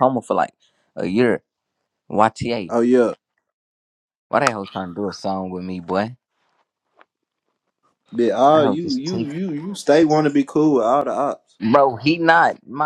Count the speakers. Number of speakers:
two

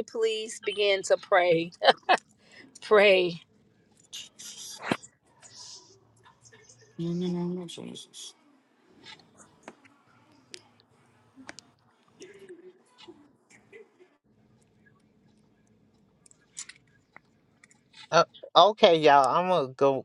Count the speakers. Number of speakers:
three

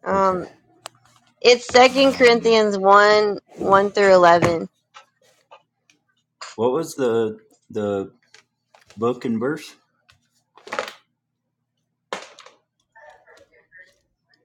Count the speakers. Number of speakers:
two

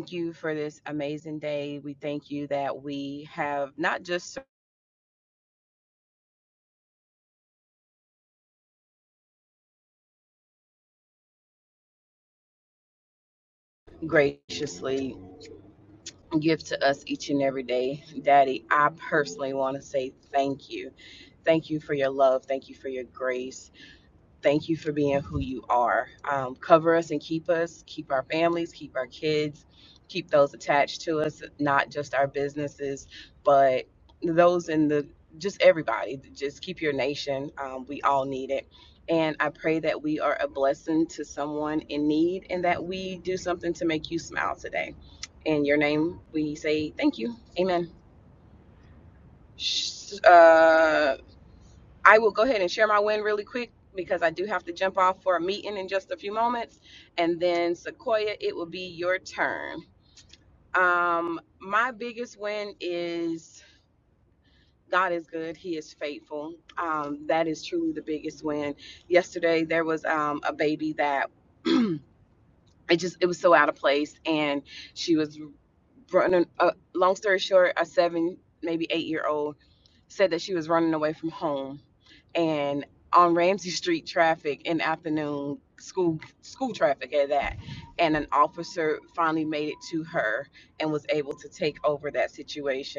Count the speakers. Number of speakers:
one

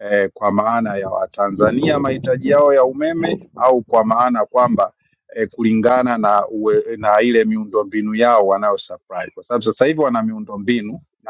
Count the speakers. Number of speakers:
one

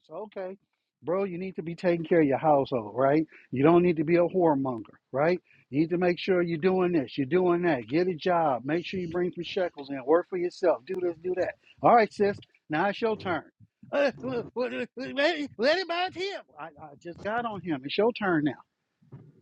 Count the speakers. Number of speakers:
one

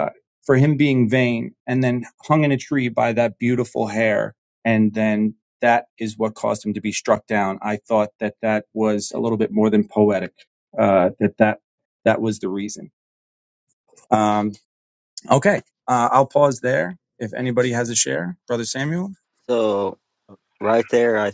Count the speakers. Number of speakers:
two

